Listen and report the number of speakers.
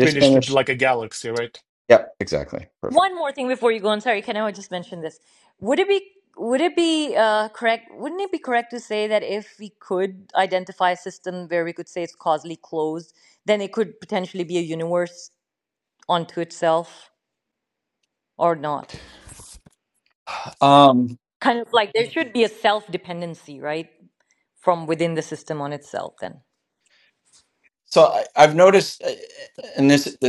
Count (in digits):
3